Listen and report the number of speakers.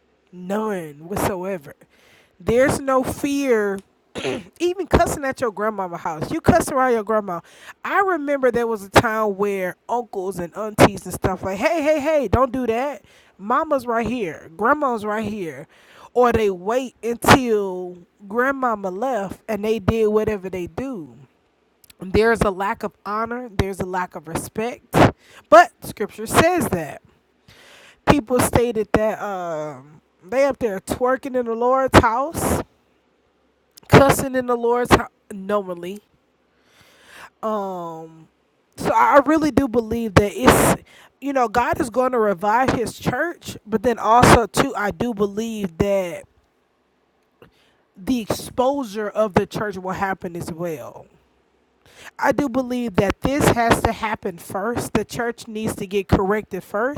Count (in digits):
1